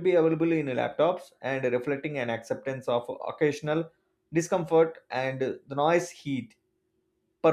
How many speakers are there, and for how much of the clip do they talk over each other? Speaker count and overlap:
1, no overlap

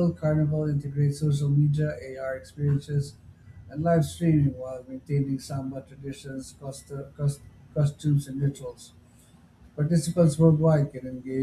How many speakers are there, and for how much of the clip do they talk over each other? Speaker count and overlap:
1, no overlap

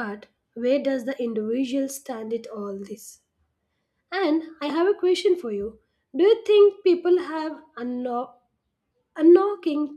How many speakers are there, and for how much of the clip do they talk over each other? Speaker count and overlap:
1, no overlap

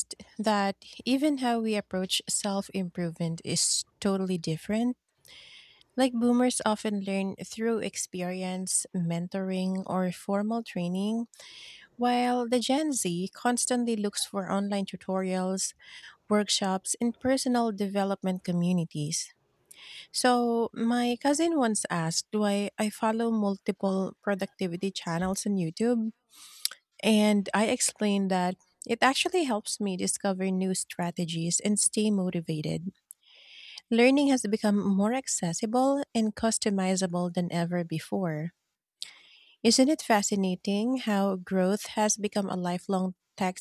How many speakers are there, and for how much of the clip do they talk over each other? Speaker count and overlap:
1, no overlap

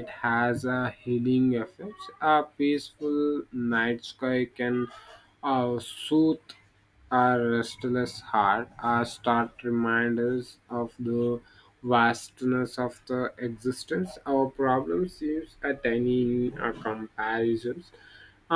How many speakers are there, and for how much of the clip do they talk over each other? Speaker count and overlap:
1, no overlap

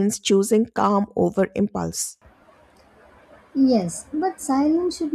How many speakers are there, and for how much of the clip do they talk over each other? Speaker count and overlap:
2, no overlap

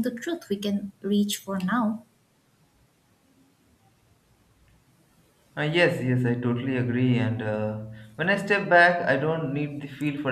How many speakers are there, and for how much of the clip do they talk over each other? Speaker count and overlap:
2, no overlap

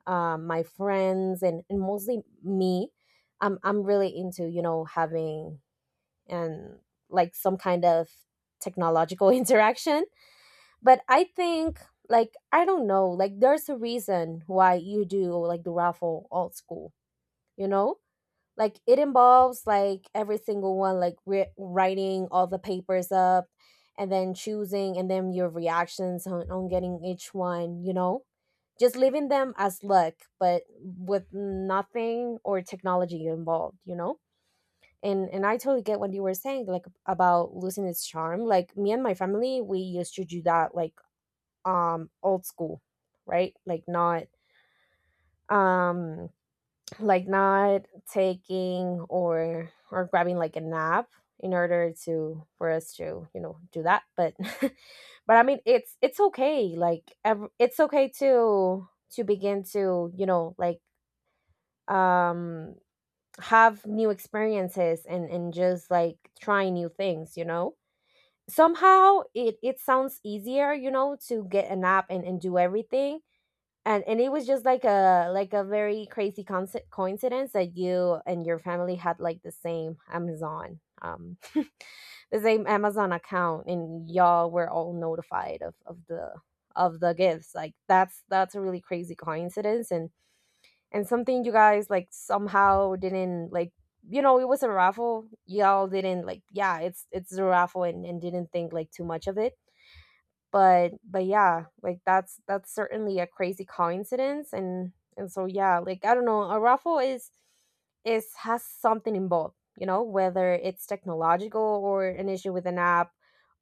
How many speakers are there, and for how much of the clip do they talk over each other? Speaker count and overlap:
1, no overlap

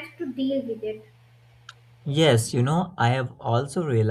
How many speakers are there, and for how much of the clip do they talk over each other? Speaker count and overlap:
2, no overlap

